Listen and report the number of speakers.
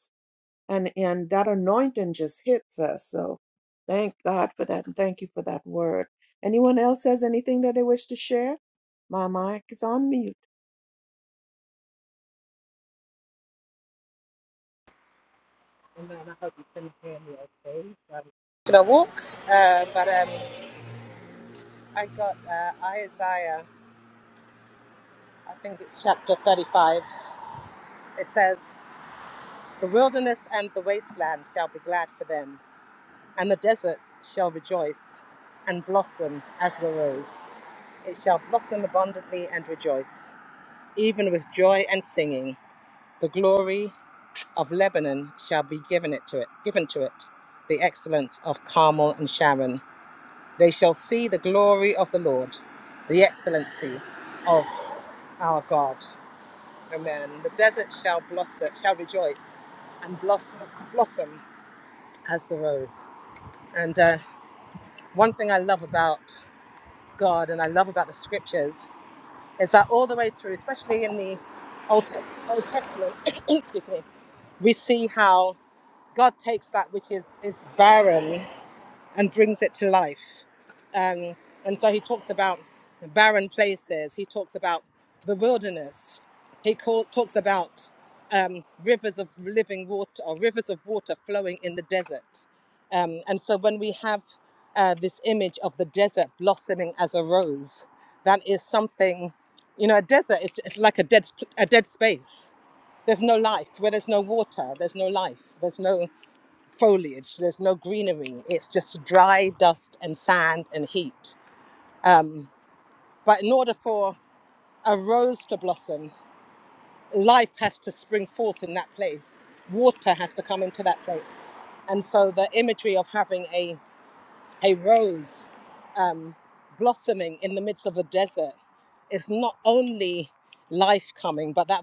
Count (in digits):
2